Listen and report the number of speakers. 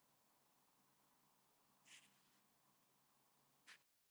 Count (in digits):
0